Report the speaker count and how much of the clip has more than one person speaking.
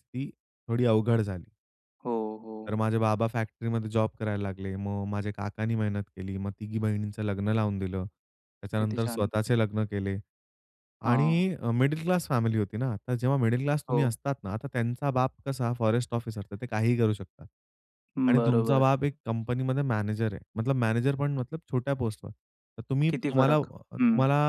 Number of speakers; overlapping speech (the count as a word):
two, about 12%